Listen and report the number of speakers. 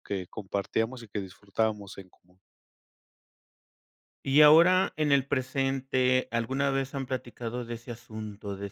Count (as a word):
two